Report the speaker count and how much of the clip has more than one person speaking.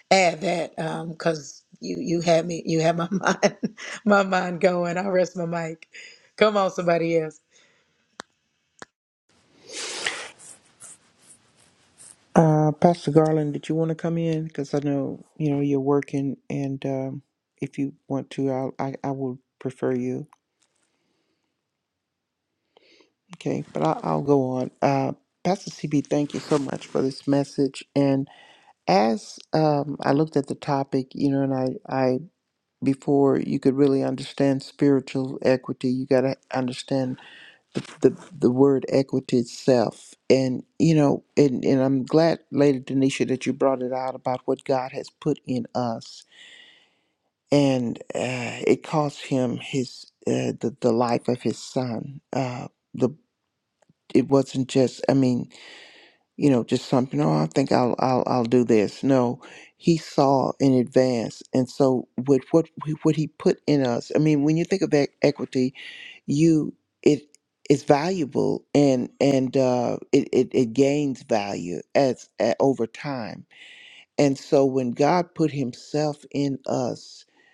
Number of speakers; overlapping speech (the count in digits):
2, no overlap